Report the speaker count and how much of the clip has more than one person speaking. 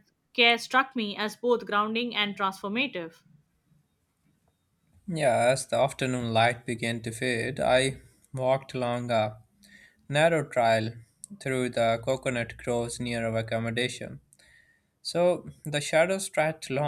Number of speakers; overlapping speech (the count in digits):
2, no overlap